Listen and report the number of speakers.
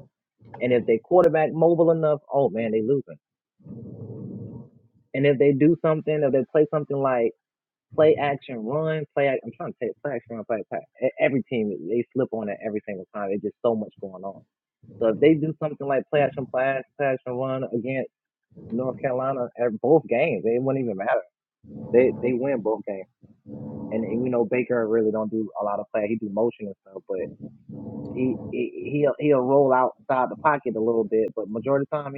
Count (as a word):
one